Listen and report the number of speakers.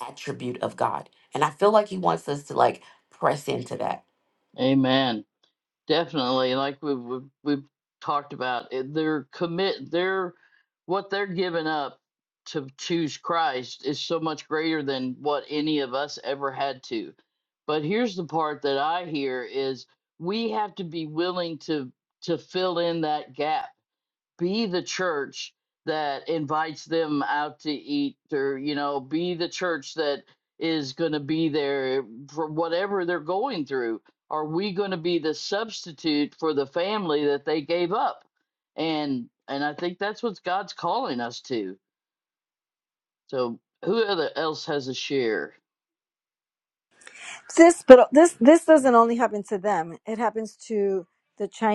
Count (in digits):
3